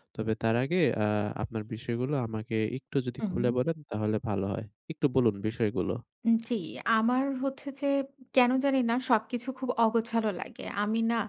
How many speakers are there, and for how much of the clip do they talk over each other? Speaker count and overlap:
2, about 3%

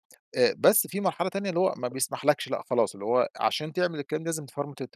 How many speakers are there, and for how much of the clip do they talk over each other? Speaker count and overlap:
1, no overlap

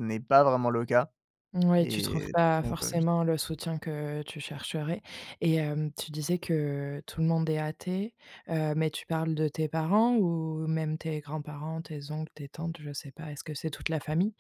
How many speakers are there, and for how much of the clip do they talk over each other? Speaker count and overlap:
2, about 5%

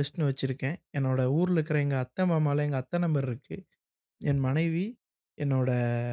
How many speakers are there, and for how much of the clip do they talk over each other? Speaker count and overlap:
1, no overlap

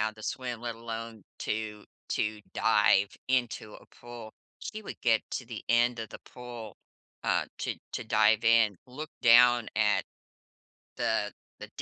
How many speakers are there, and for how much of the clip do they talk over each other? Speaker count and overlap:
1, no overlap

